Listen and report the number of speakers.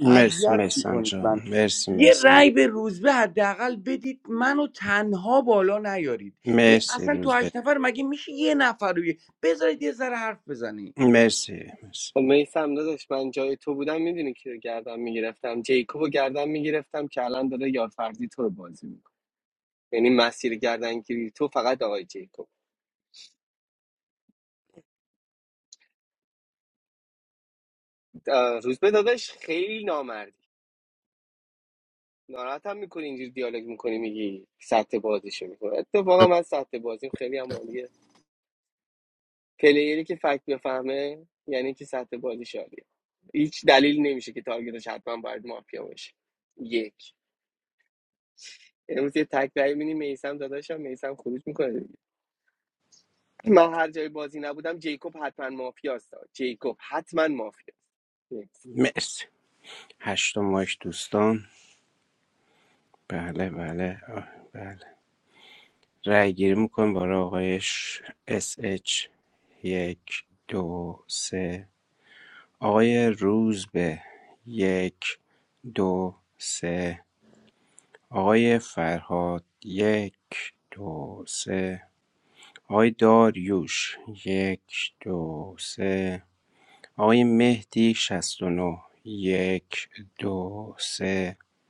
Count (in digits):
3